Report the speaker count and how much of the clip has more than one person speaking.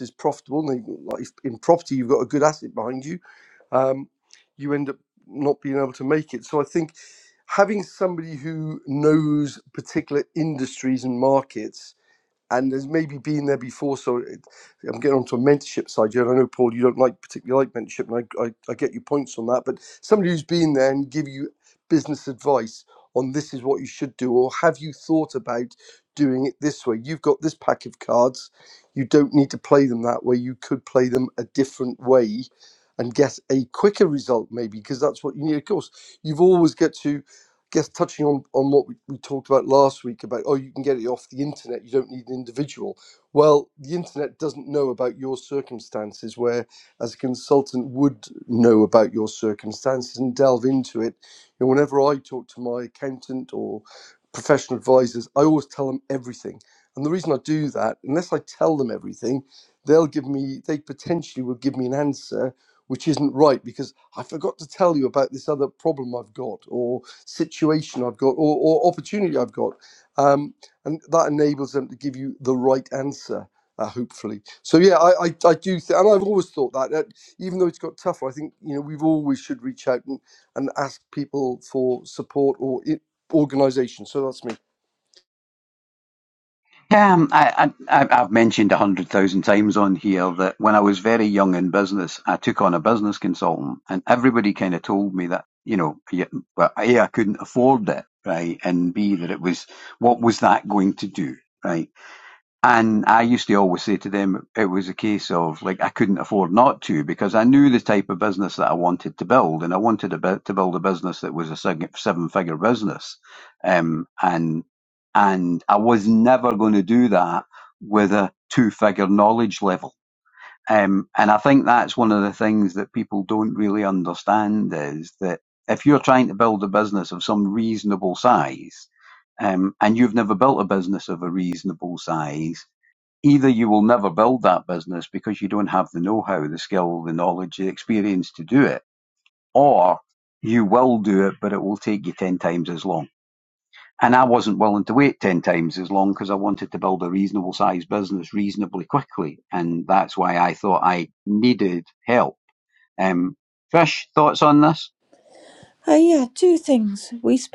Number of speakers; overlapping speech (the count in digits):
3, no overlap